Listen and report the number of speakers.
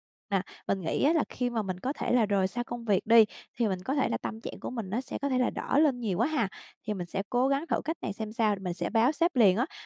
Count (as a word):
one